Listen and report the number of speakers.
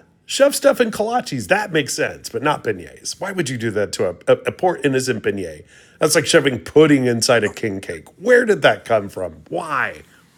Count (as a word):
one